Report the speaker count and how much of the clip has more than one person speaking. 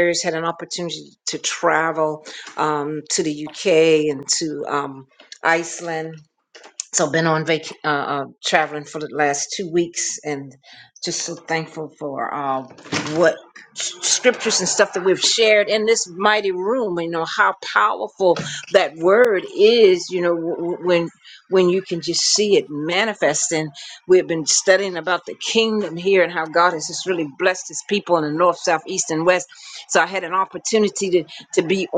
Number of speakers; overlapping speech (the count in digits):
1, no overlap